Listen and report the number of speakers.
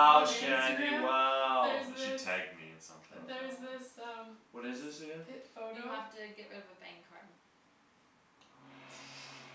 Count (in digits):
4